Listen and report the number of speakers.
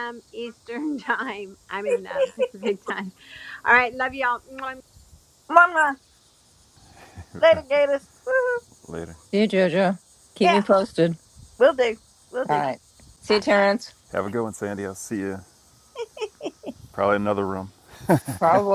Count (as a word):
four